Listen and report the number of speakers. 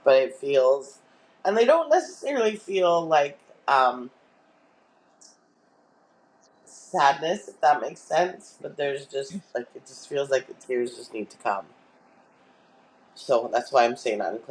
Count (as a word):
one